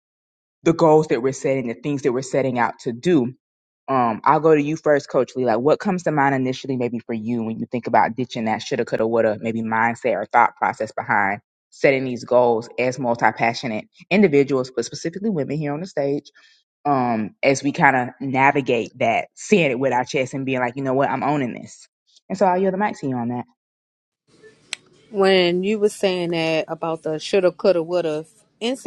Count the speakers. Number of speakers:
2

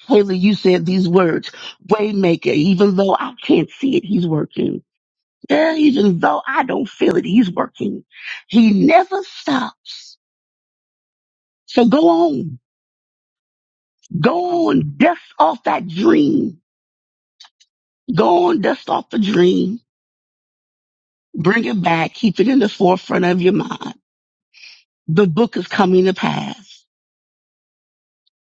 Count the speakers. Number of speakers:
1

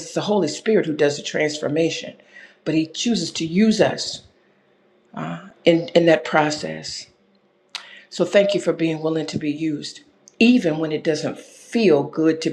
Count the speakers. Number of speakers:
1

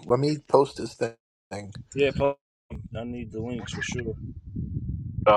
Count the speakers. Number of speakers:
2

